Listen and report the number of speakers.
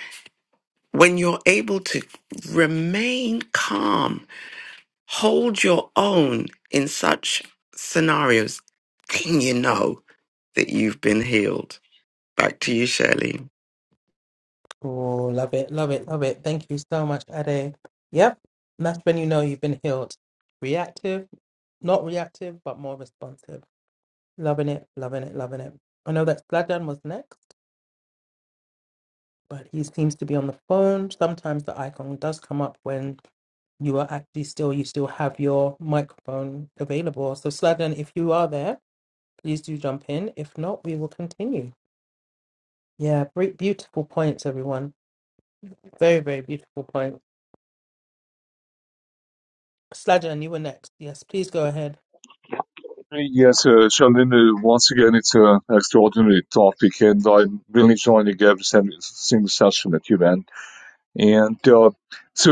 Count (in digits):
3